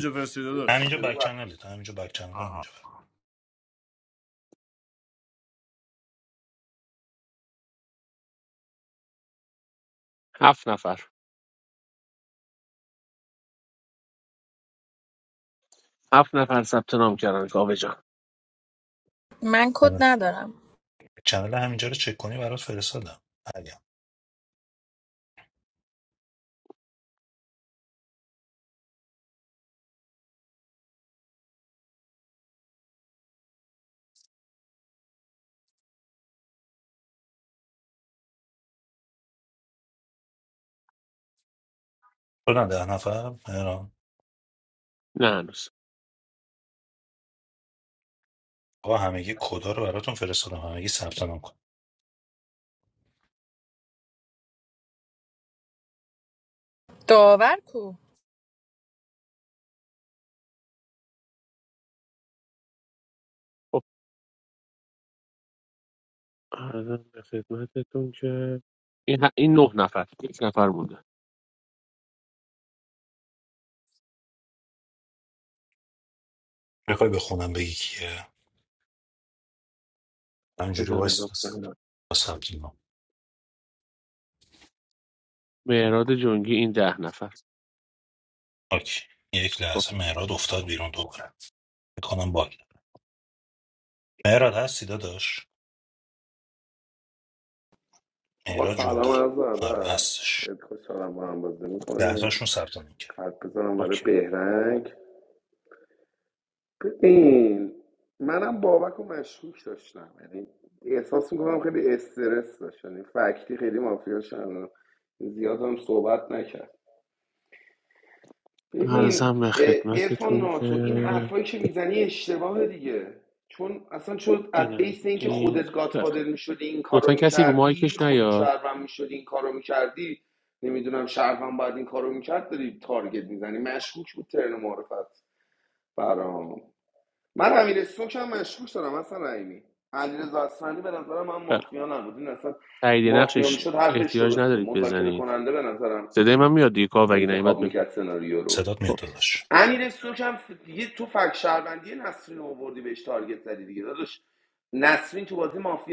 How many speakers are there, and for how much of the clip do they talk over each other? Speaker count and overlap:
5, about 7%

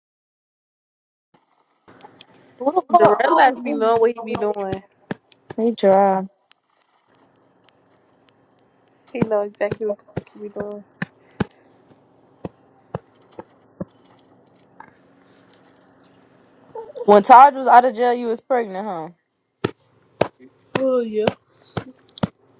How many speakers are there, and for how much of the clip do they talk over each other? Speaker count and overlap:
2, about 5%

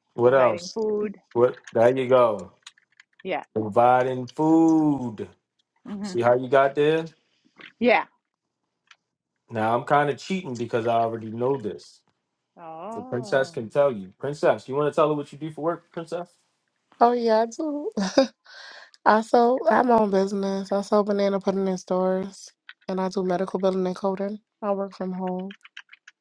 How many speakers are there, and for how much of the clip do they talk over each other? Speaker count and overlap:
3, about 4%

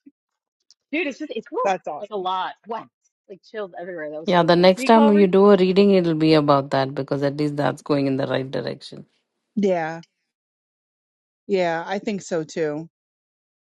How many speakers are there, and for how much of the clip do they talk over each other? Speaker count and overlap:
3, about 12%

